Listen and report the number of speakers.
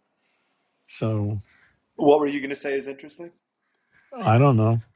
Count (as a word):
two